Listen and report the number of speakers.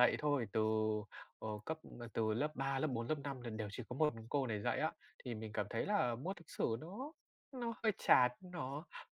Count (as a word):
one